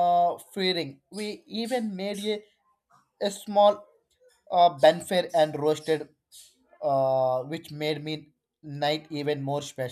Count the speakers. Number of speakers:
one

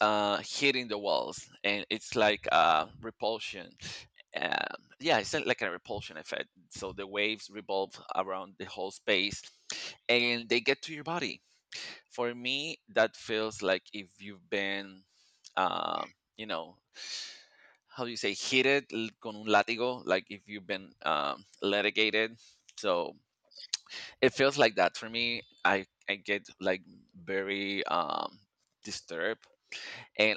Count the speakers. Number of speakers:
one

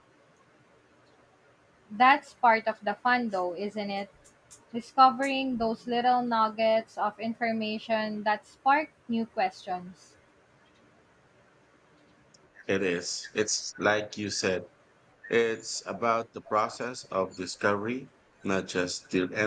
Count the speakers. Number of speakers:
two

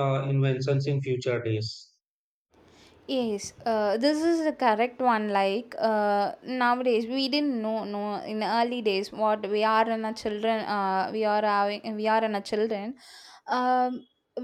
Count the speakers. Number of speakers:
two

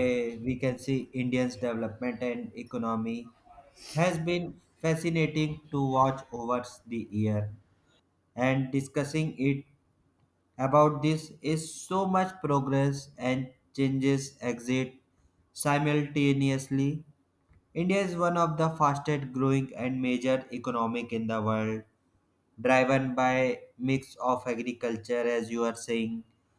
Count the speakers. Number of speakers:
one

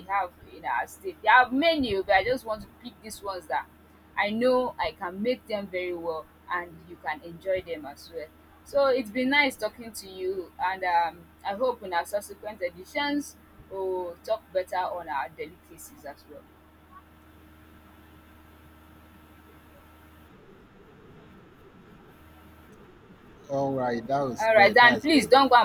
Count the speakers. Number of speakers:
two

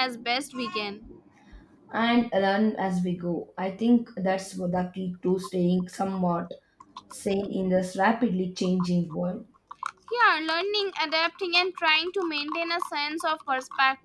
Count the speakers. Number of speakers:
two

